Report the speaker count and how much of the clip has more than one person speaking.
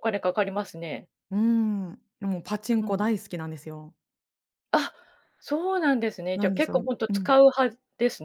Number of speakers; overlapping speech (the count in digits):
2, about 14%